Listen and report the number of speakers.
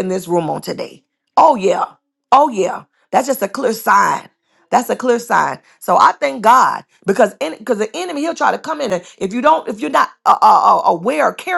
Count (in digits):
1